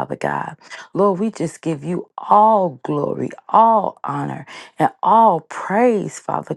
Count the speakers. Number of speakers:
one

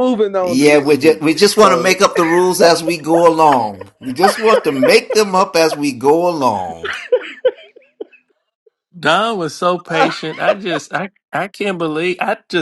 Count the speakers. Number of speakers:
three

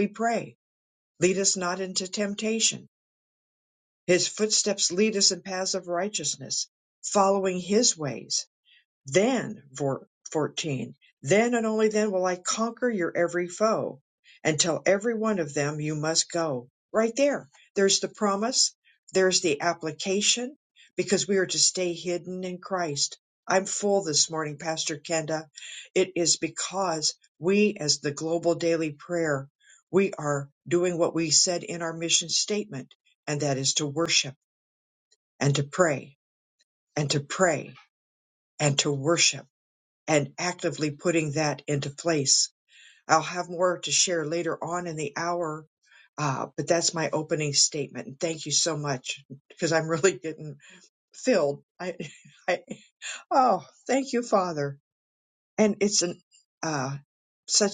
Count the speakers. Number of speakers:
one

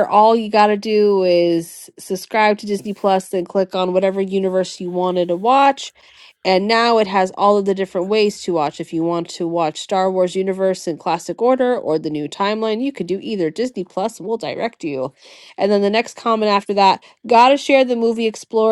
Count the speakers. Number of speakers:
one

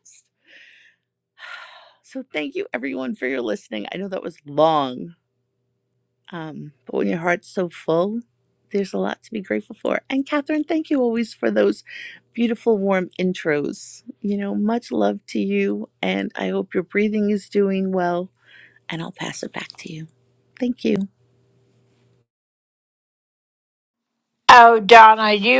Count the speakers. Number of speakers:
two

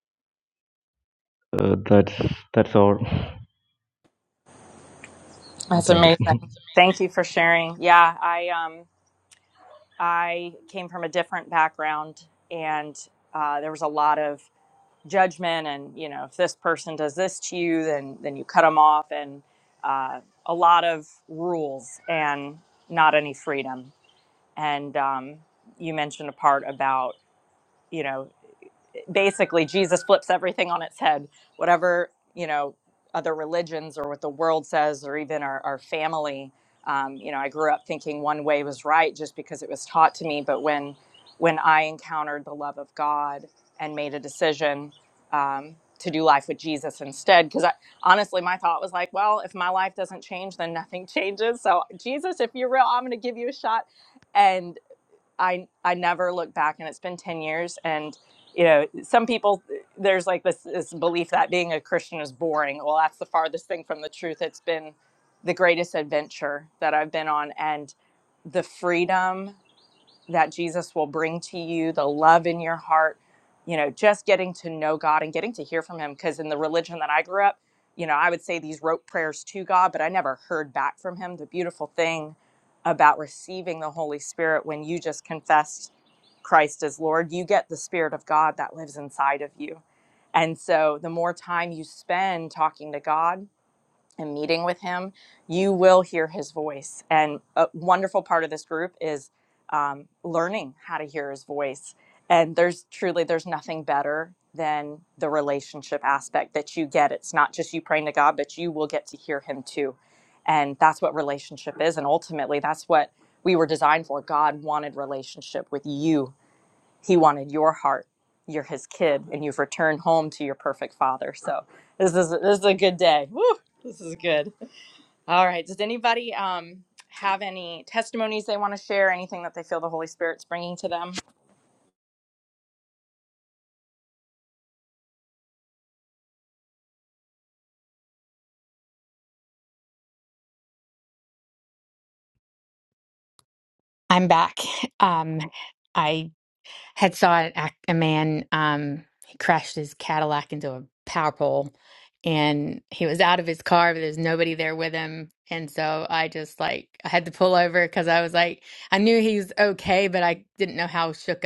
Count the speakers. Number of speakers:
three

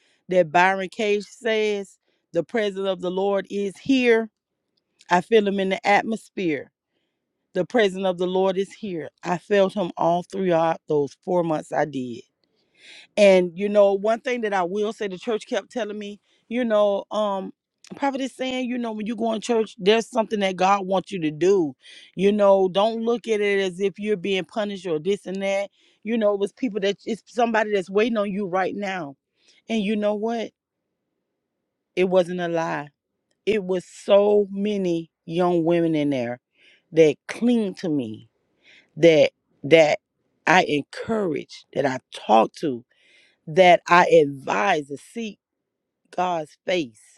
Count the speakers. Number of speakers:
one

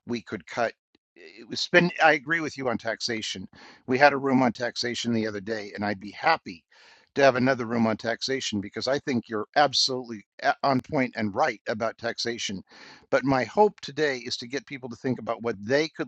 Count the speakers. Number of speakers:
one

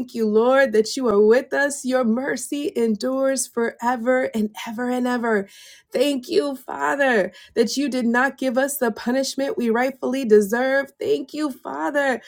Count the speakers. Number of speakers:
one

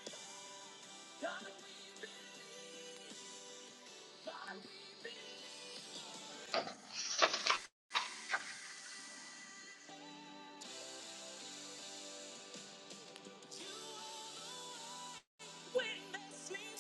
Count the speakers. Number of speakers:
zero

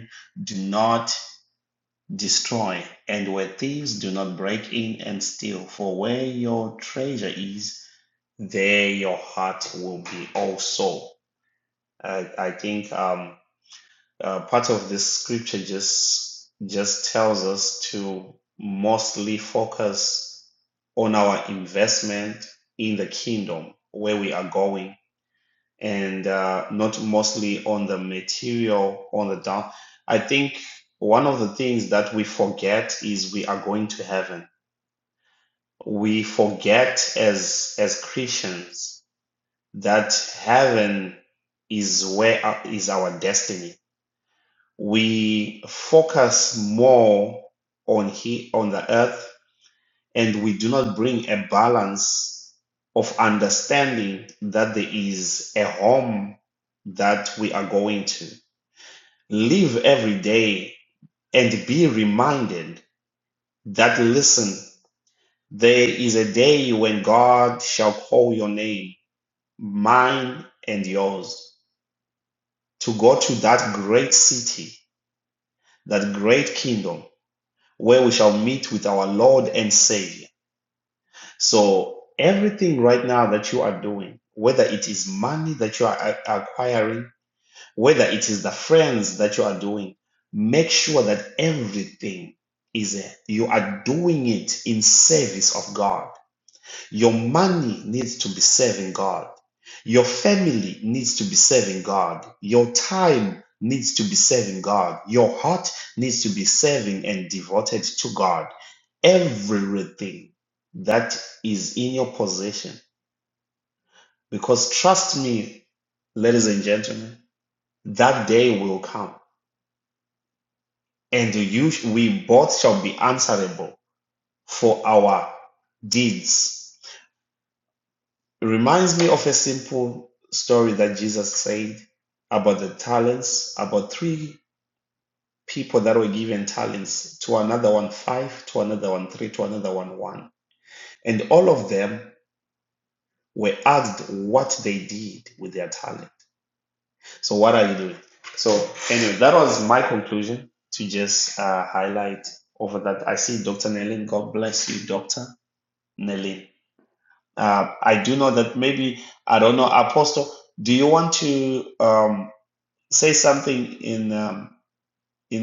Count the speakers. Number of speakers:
one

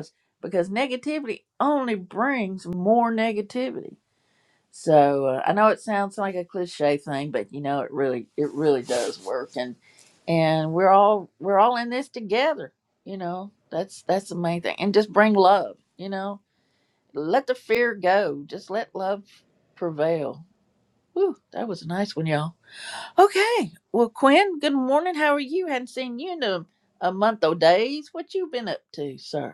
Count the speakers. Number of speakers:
one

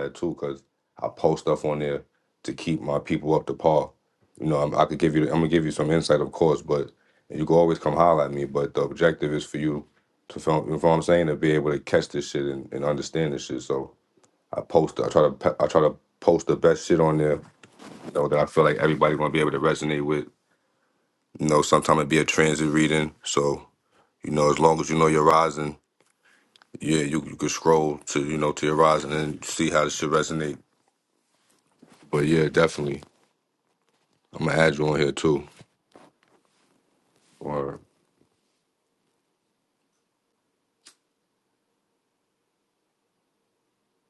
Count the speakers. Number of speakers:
one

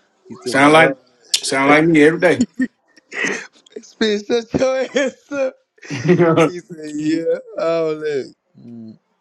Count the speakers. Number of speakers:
two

